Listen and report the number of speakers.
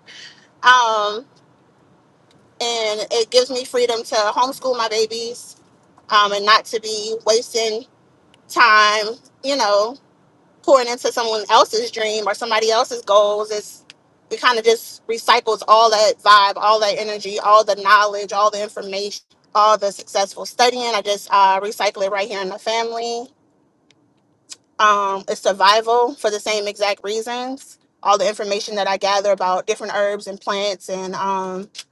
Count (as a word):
one